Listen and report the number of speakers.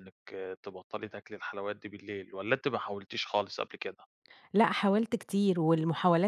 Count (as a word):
two